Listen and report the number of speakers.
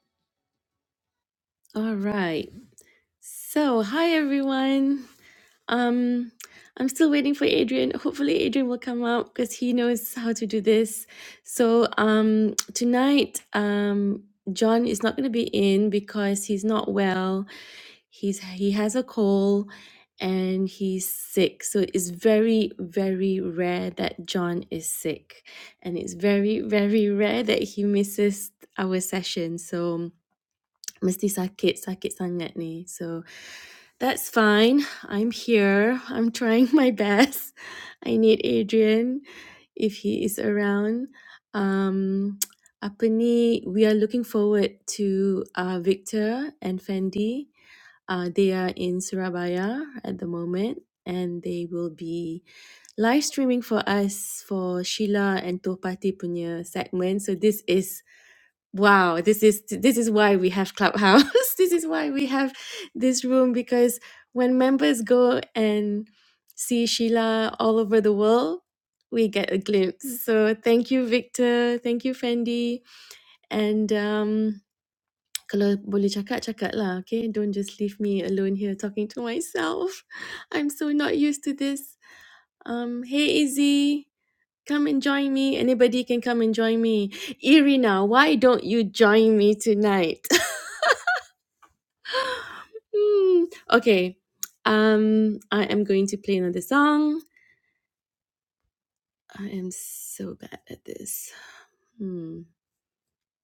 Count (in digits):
1